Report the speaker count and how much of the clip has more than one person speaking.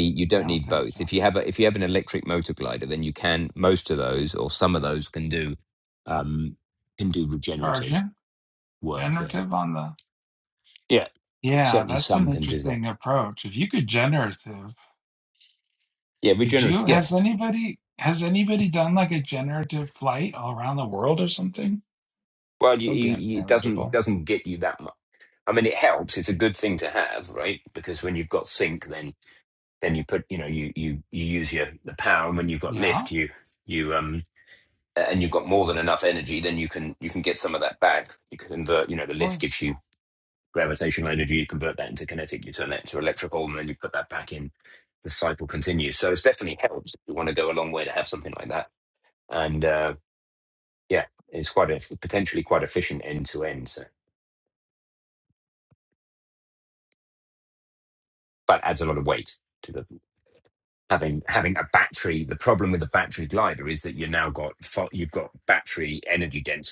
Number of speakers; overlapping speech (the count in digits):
2, about 8%